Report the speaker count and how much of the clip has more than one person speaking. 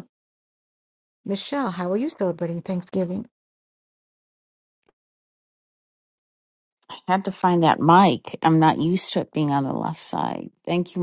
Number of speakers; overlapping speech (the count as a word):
two, no overlap